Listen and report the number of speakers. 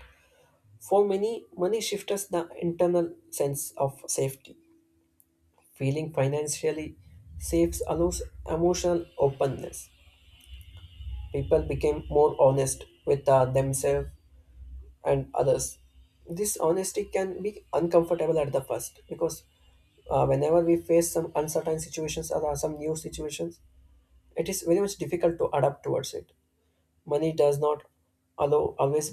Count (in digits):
1